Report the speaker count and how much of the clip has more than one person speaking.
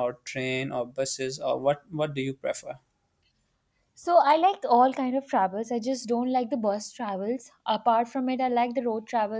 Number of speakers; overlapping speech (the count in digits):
2, no overlap